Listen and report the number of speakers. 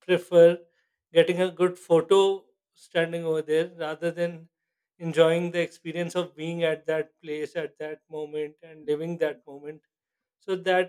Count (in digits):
1